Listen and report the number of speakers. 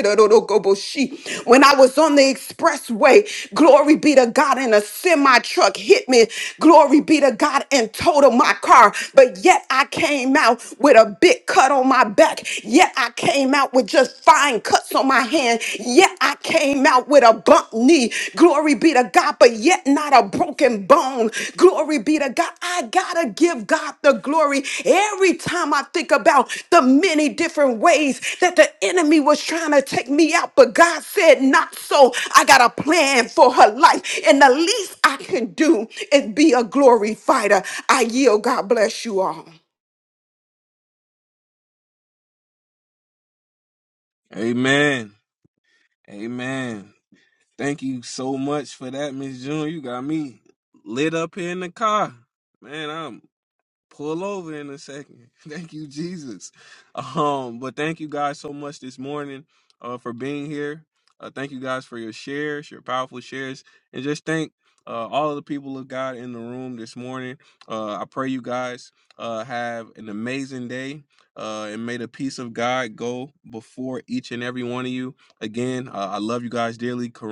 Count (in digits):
2